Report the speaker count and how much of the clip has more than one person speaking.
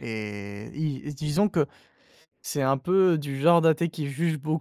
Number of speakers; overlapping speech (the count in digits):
1, no overlap